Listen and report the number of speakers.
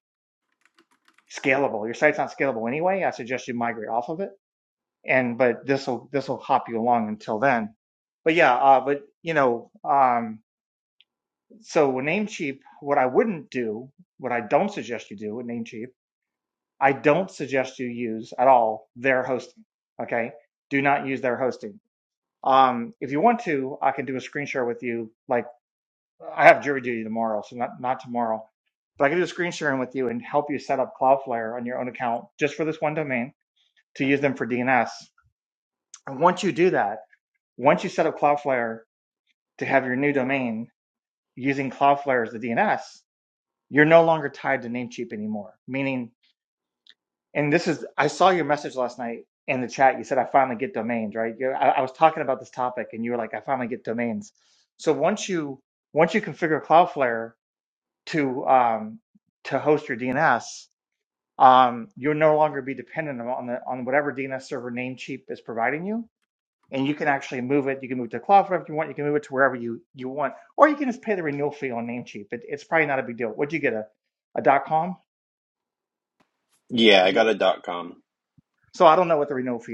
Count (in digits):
2